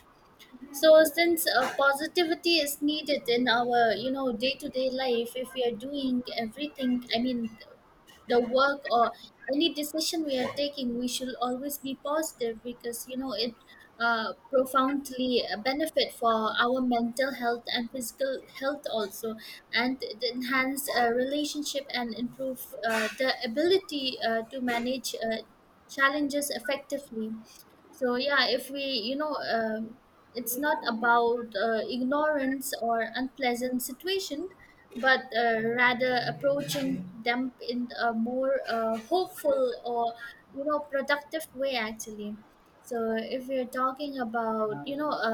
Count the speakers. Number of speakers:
1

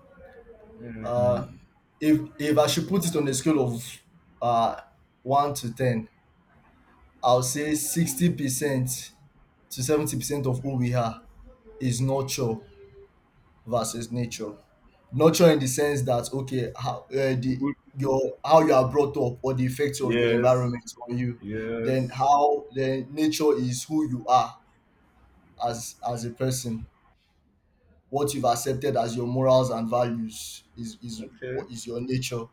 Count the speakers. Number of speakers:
2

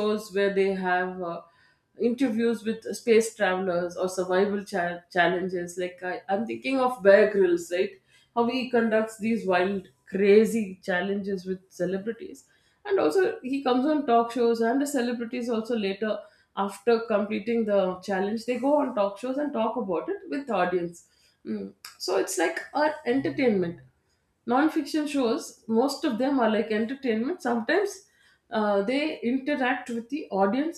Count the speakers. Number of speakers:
1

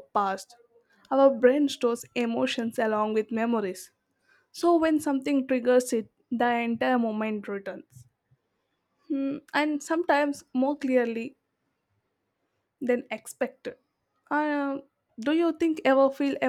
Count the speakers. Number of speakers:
1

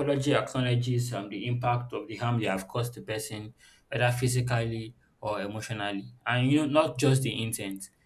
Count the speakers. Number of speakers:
1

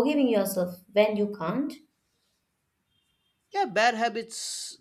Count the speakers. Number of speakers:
2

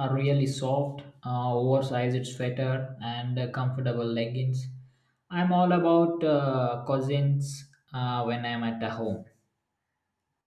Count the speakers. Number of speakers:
1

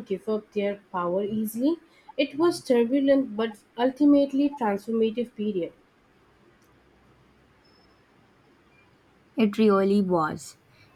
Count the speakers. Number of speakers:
2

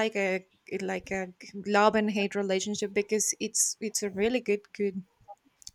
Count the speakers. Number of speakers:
1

